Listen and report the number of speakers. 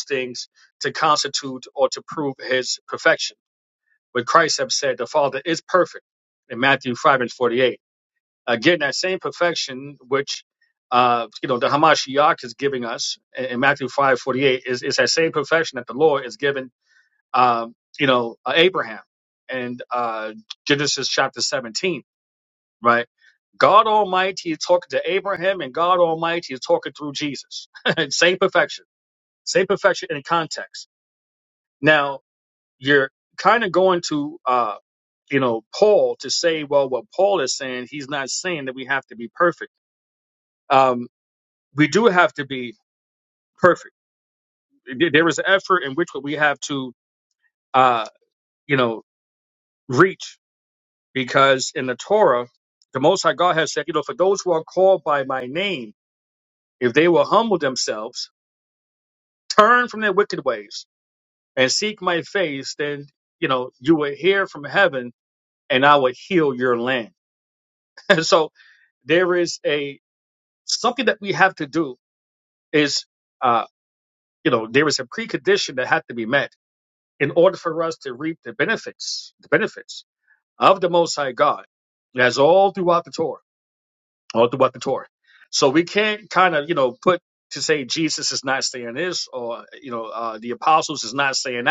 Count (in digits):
1